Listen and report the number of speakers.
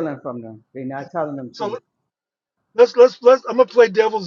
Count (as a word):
two